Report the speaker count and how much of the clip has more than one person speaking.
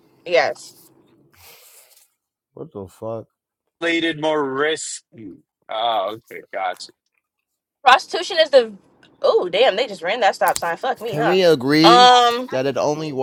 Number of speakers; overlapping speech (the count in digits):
3, about 4%